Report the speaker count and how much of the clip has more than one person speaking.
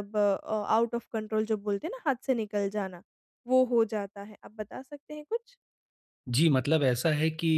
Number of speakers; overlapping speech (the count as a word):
two, no overlap